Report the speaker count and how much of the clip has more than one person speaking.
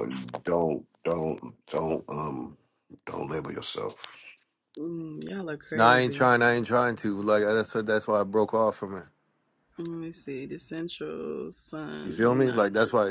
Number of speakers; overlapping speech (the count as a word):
three, about 8%